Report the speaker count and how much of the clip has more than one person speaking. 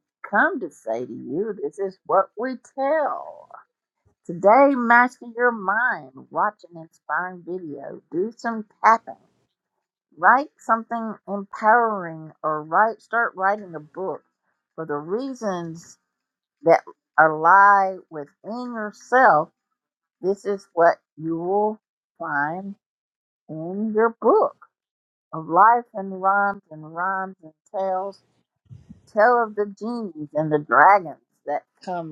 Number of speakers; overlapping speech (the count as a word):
one, no overlap